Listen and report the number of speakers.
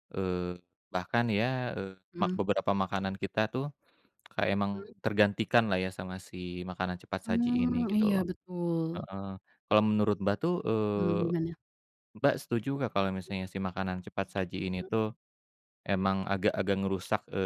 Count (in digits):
2